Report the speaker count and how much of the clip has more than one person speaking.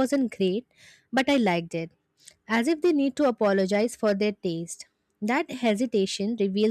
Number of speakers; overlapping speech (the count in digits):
1, no overlap